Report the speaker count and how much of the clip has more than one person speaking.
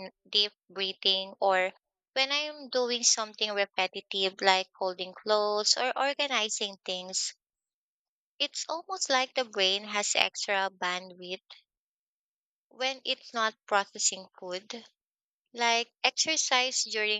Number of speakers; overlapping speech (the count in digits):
1, no overlap